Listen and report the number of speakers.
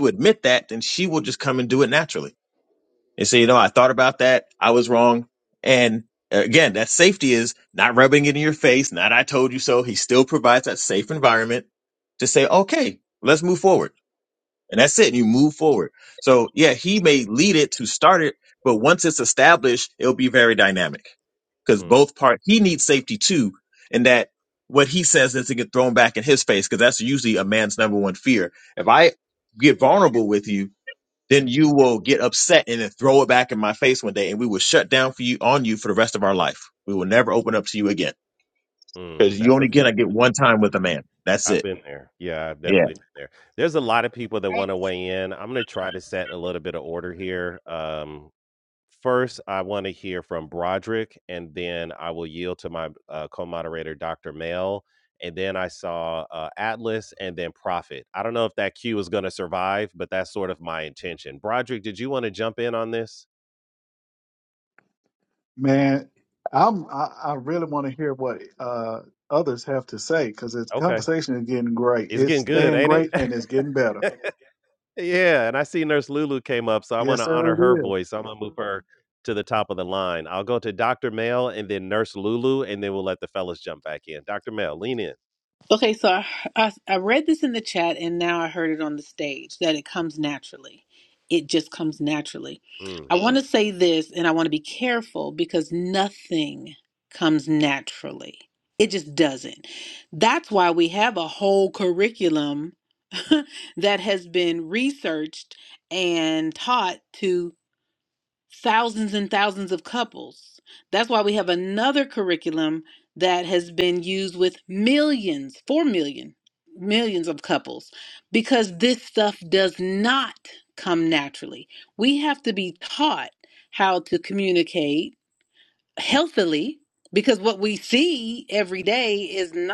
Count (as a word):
four